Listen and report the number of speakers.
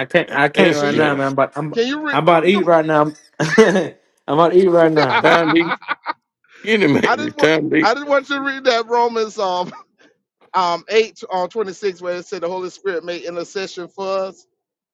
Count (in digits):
3